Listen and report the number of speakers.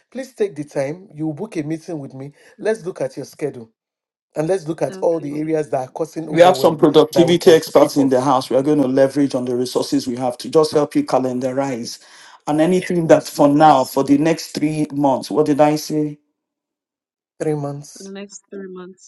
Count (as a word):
three